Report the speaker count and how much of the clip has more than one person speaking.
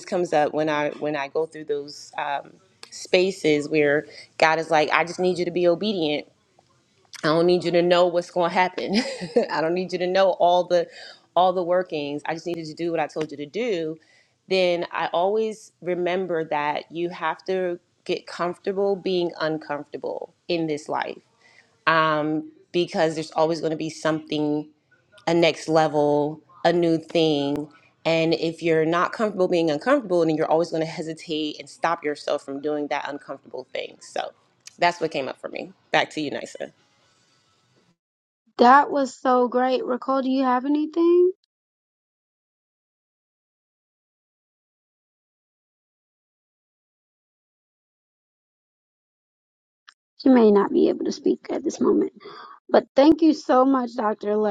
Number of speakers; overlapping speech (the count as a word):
two, no overlap